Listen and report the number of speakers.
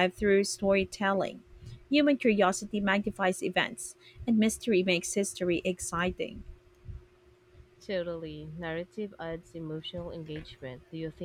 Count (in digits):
2